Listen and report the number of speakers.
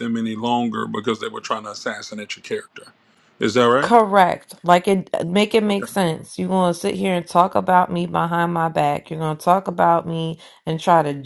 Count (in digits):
2